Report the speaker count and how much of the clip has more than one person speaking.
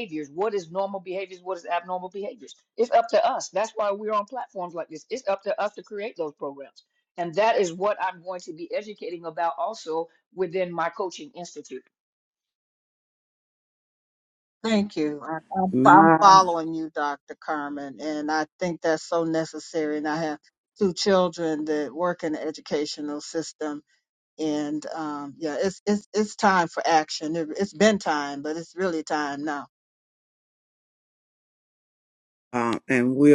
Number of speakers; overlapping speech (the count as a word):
three, about 2%